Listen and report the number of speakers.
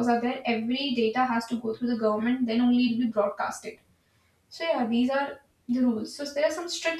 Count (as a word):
one